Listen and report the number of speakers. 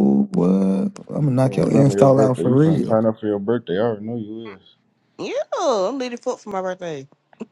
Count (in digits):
3